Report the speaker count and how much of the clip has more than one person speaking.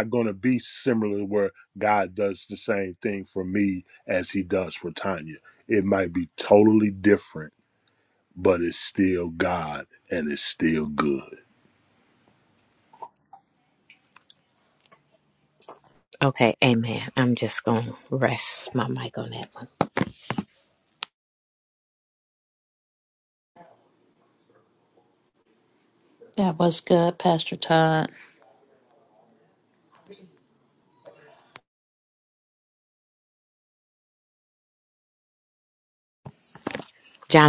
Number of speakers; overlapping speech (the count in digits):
3, no overlap